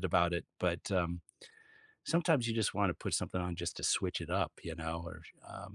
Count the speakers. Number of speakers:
one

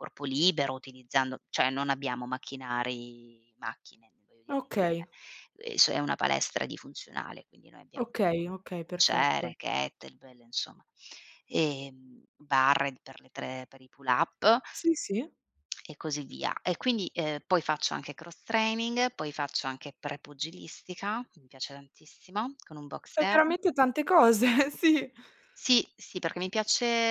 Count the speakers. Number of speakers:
two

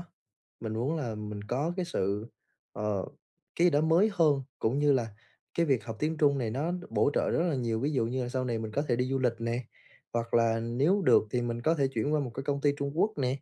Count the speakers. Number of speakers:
one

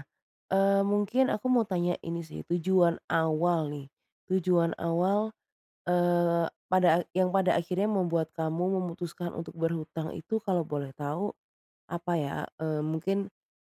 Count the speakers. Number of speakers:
one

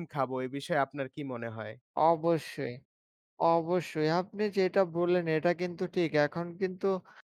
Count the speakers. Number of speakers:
two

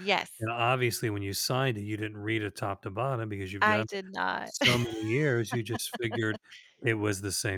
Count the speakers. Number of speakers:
two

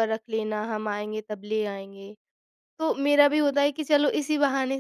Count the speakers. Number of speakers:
one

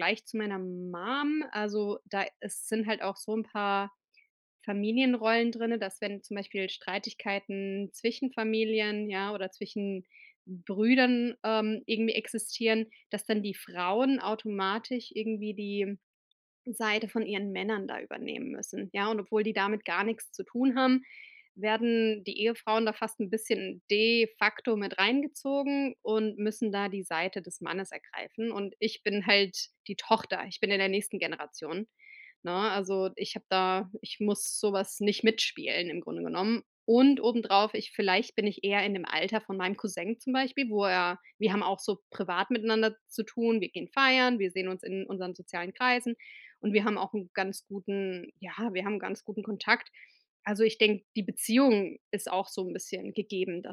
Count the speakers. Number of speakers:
one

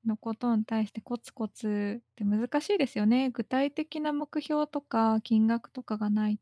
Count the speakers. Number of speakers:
one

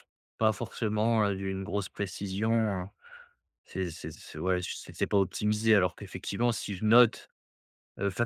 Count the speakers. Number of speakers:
one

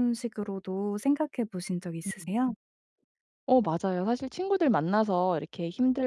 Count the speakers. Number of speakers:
two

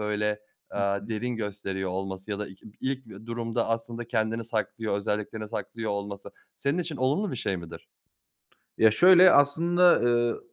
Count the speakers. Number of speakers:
two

